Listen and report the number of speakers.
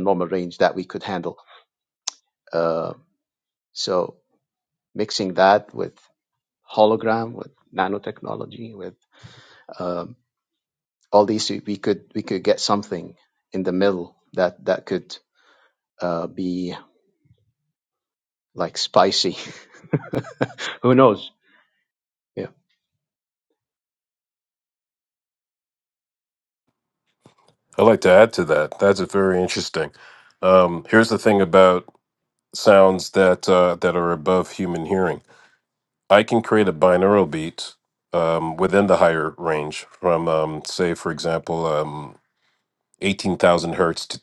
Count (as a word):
two